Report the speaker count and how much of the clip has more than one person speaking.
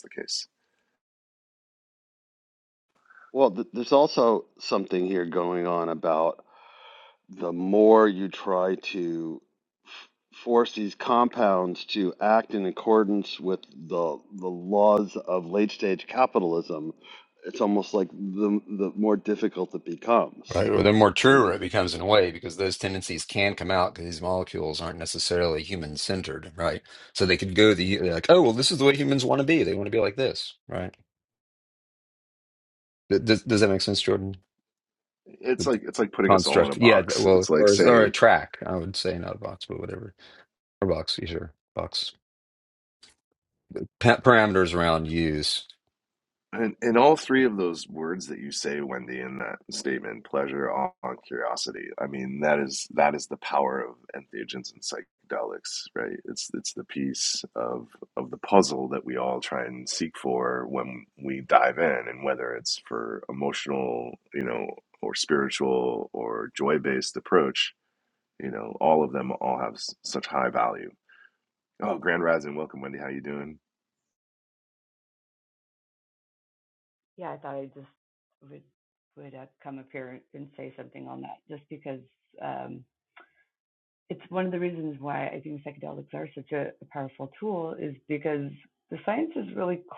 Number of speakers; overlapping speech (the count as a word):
four, about 3%